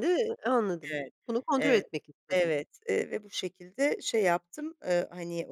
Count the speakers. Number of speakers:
2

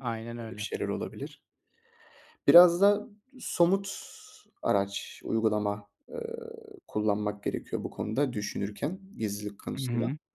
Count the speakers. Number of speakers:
2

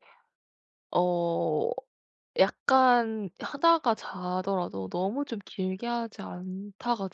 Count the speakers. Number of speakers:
1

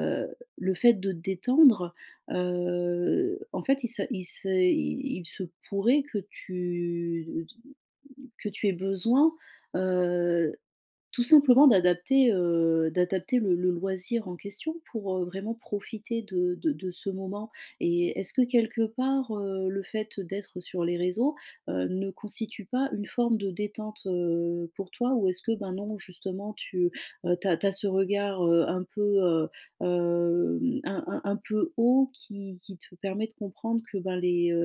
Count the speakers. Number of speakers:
1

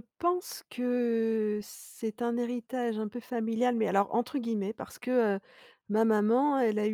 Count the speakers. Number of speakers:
1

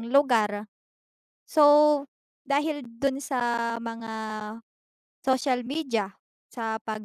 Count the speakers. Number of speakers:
1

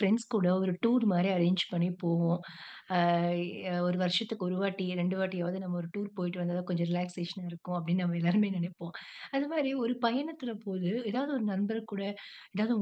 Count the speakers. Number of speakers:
1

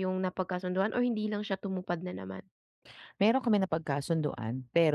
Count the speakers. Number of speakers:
2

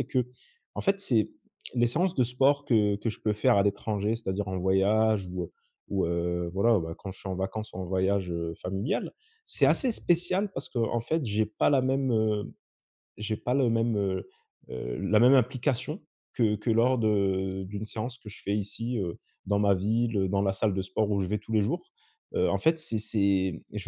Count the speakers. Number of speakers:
1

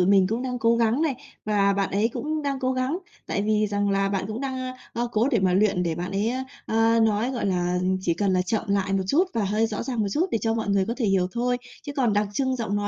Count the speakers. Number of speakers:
1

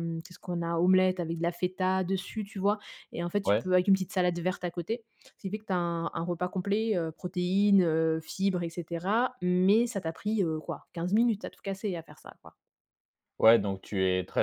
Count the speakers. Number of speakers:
2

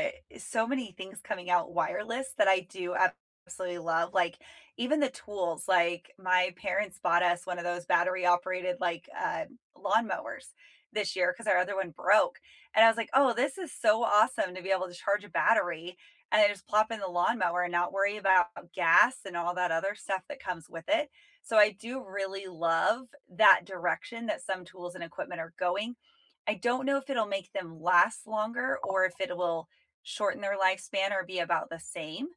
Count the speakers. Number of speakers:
1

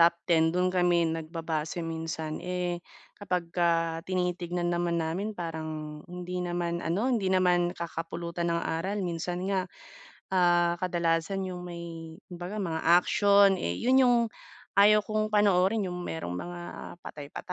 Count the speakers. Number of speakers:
1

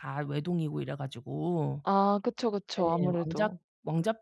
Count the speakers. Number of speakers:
2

